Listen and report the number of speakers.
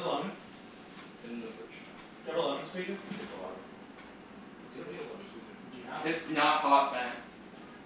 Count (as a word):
three